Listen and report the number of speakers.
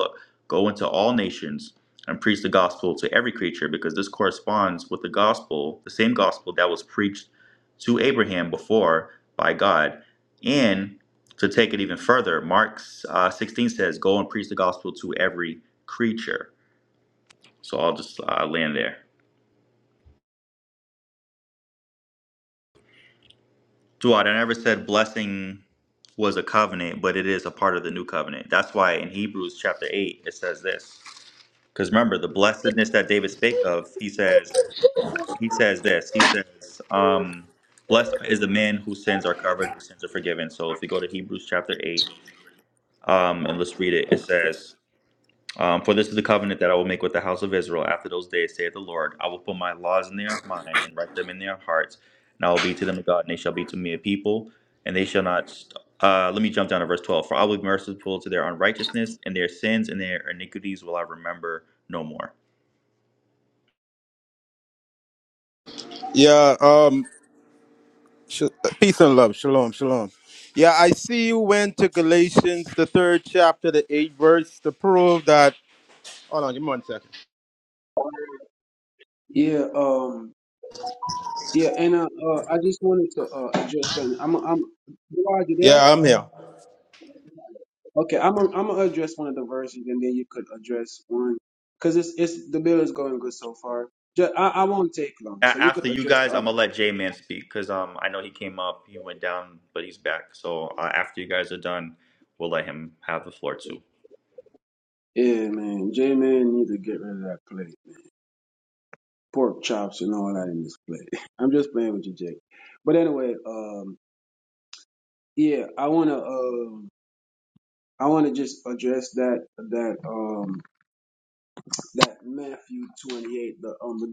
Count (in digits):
3